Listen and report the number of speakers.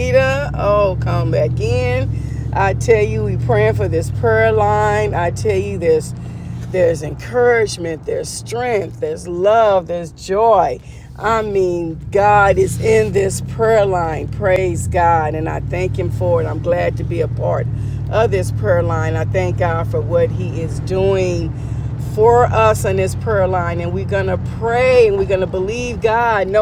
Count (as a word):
one